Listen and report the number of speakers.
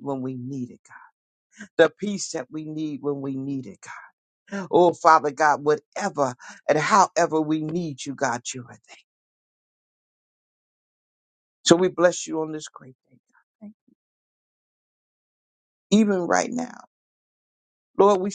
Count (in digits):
1